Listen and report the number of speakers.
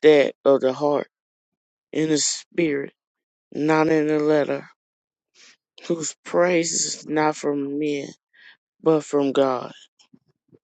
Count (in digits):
1